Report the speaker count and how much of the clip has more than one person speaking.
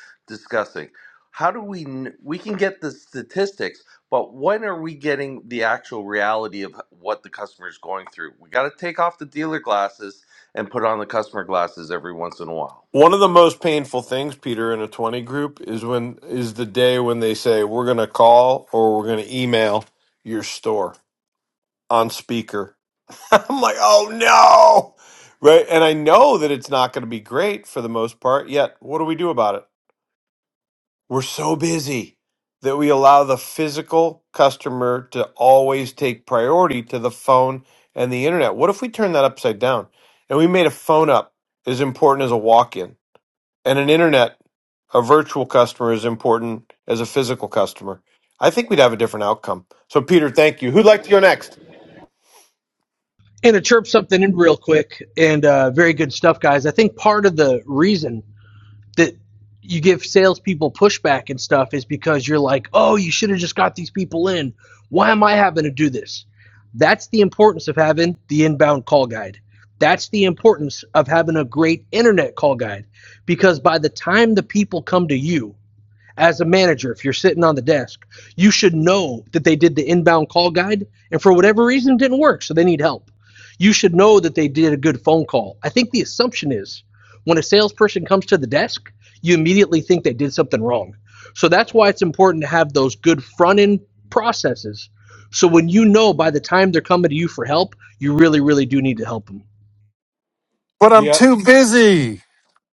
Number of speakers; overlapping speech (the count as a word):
four, under 1%